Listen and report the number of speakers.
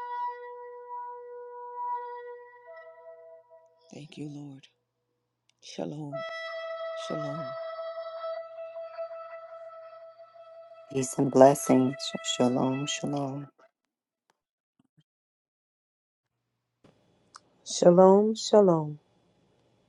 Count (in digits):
3